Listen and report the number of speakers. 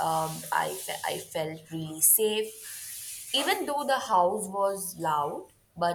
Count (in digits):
1